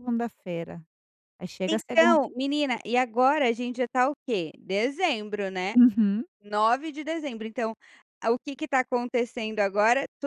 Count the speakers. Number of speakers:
two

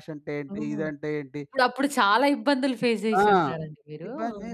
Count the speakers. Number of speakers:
two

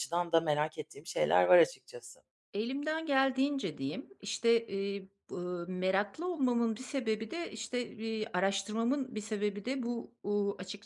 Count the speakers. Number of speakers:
two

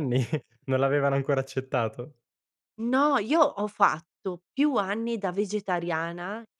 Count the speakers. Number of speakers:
two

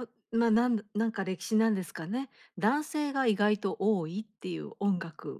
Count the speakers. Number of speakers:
one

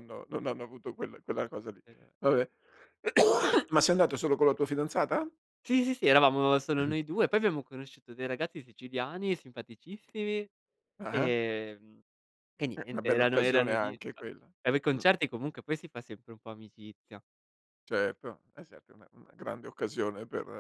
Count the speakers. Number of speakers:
two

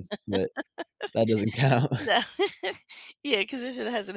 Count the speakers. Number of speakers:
two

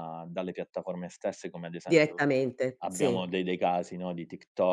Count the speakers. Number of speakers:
two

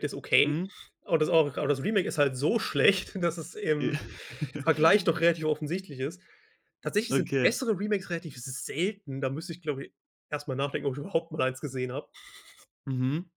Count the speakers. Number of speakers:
two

